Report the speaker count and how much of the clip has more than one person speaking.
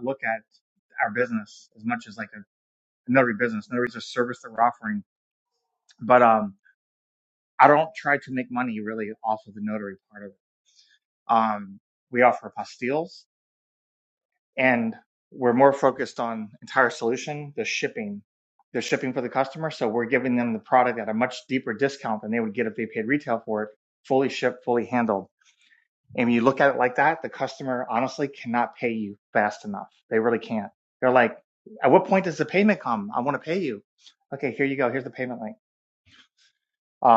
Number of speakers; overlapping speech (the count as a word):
one, no overlap